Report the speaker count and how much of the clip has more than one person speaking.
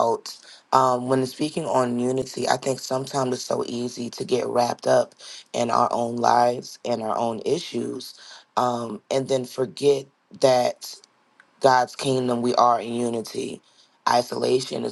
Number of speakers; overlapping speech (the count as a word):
one, no overlap